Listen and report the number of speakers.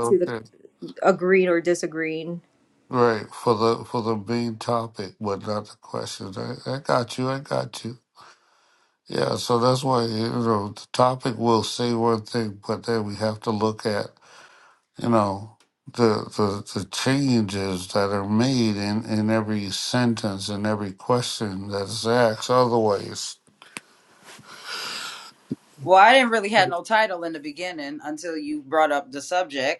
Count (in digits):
3